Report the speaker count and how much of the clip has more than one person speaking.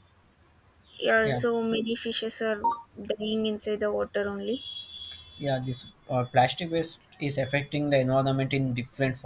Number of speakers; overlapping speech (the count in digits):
2, about 2%